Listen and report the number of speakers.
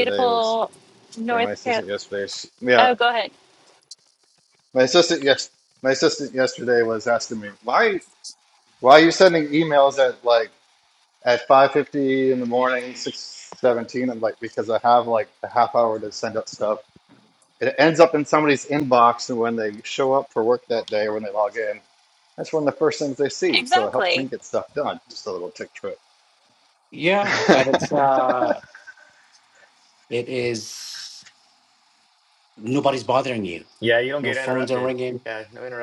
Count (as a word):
four